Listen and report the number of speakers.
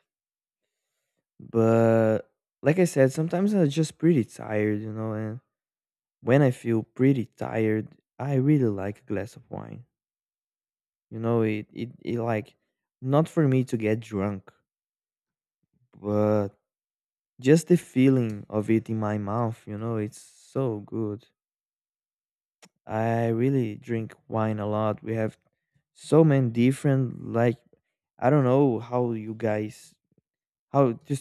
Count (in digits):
1